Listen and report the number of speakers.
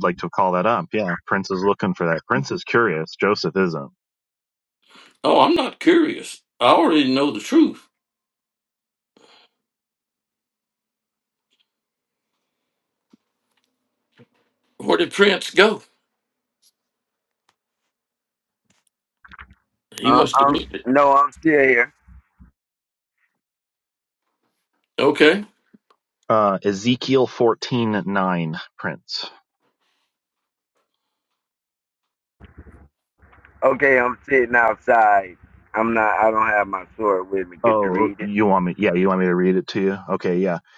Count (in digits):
3